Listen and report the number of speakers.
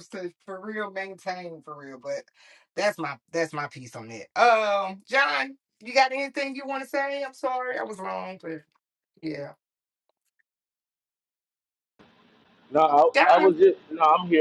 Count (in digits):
2